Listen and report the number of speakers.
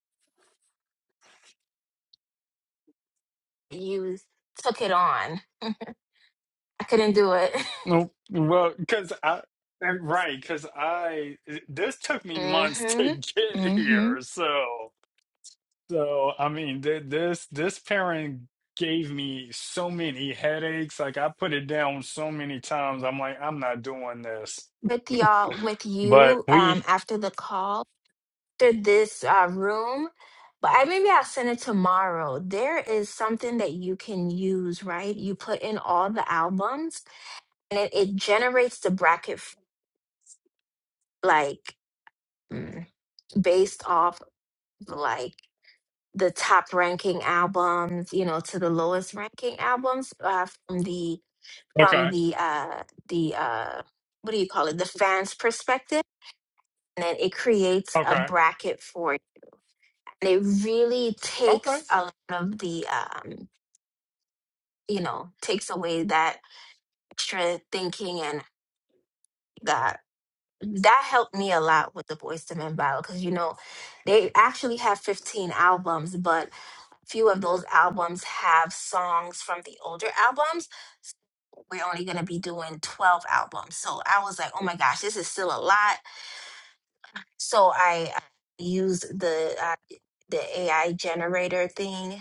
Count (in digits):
2